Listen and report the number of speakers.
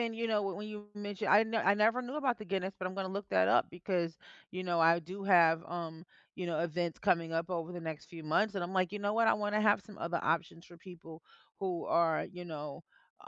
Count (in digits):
1